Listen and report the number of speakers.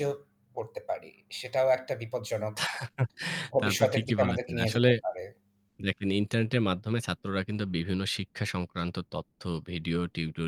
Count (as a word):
two